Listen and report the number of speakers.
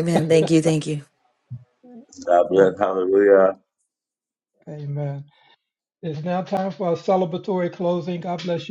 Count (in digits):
3